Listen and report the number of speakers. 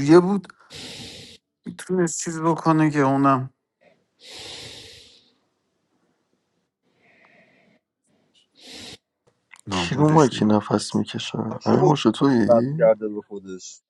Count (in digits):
3